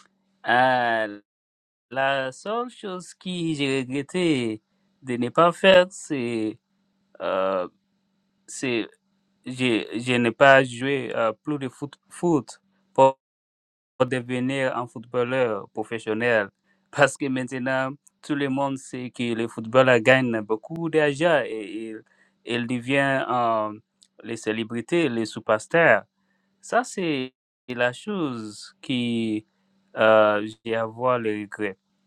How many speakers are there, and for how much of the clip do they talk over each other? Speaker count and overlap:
1, no overlap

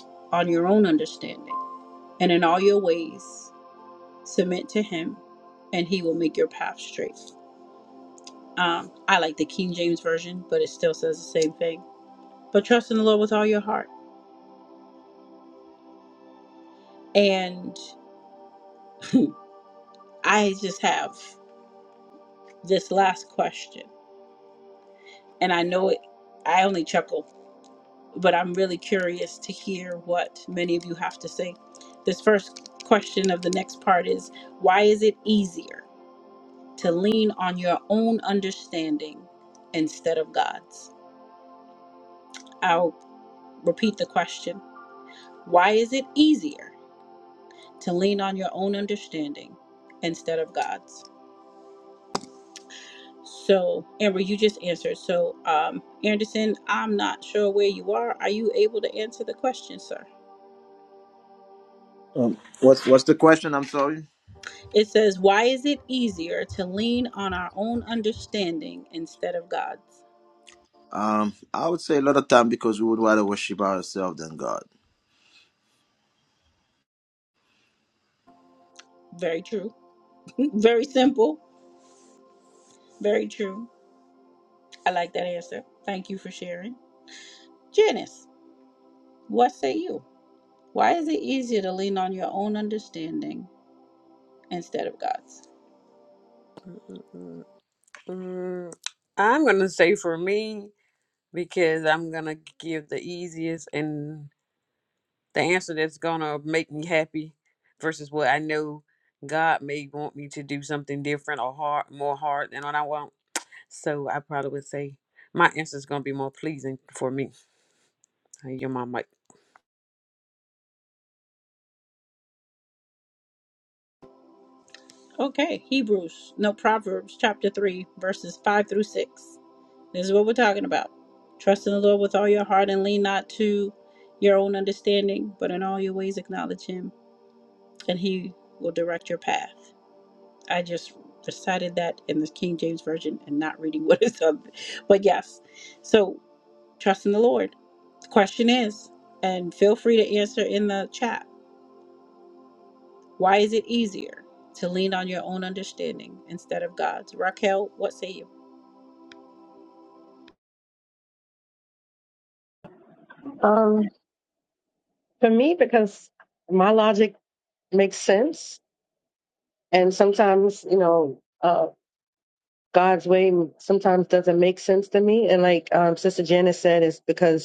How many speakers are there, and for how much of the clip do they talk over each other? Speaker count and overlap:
4, no overlap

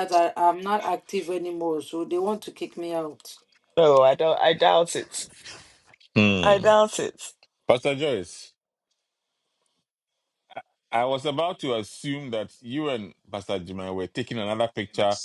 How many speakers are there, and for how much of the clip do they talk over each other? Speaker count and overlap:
3, about 2%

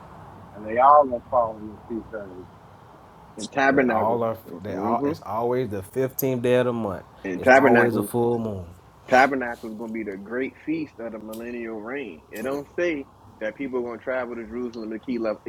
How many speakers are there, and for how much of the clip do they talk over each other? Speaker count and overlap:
3, about 11%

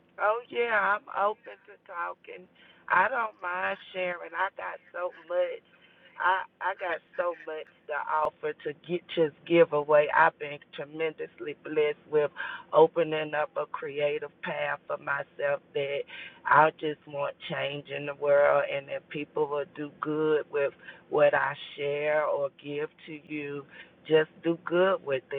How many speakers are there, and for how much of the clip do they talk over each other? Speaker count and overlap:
1, no overlap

